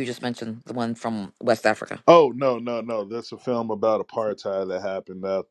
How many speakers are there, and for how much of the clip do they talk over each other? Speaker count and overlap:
2, no overlap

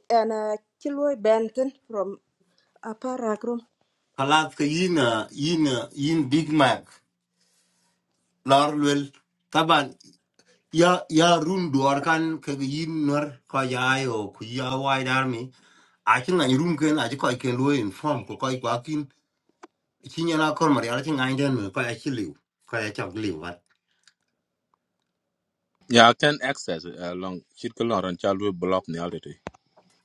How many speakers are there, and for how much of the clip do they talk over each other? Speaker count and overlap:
3, no overlap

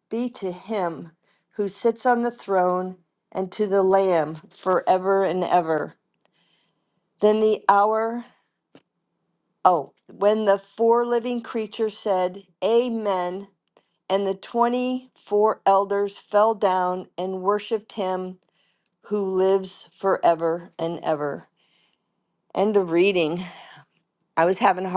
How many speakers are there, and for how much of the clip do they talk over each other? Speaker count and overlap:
1, no overlap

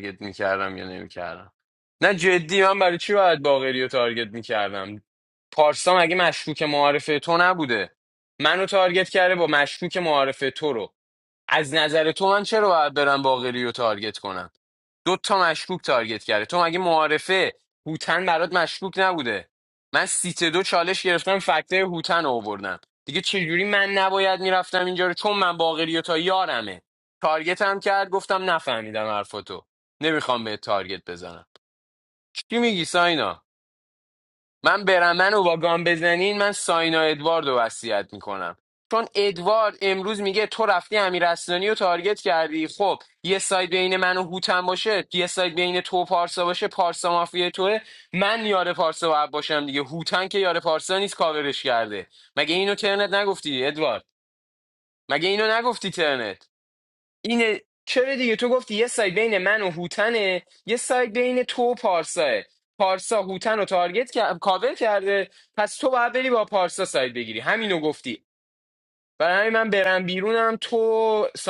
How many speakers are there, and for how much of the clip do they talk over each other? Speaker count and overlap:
1, no overlap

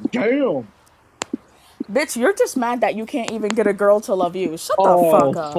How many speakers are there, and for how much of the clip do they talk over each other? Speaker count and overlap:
2, about 15%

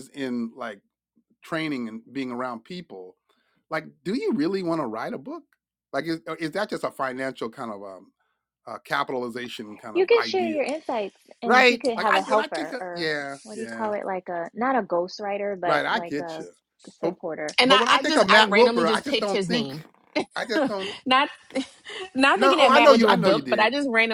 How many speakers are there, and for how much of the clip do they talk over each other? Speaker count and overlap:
3, about 30%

